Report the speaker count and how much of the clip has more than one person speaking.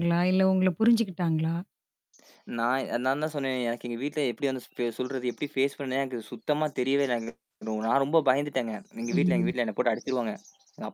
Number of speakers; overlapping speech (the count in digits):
2, about 4%